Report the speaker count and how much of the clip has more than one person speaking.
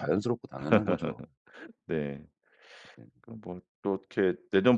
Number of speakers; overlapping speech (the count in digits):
2, no overlap